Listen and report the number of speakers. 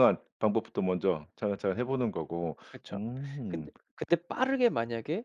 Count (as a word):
two